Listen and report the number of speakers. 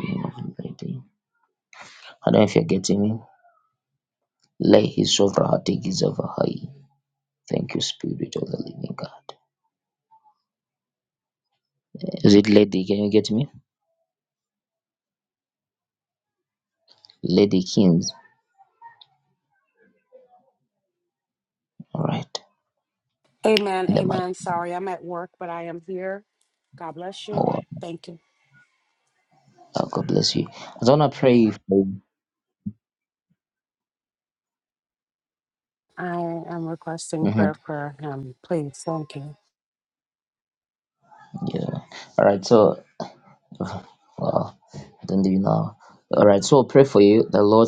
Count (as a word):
two